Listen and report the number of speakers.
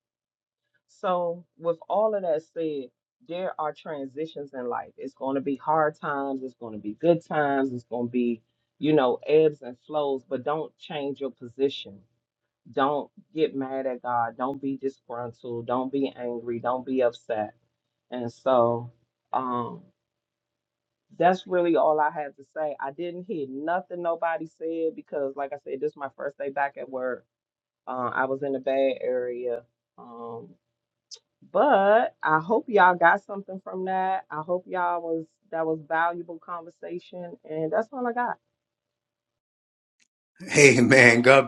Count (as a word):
two